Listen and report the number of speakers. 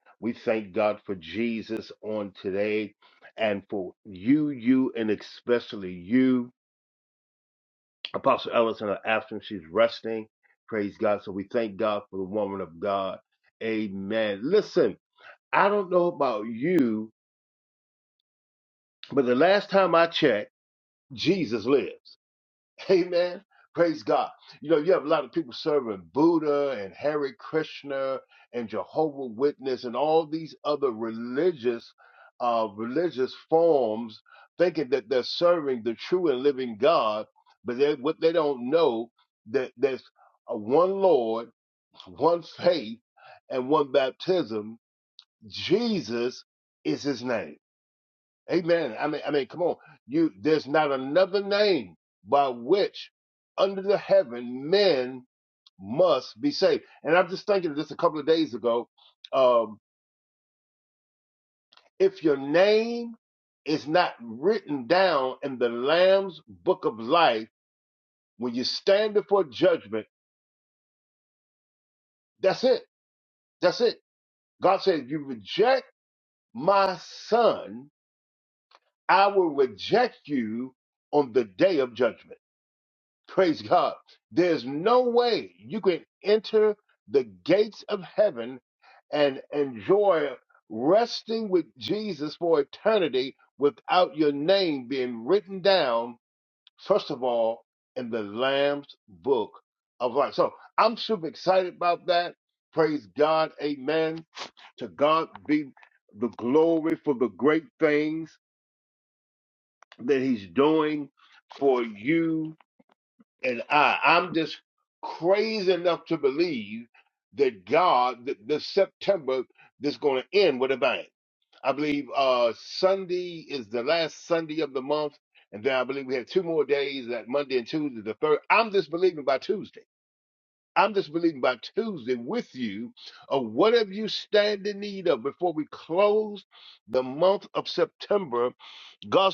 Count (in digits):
1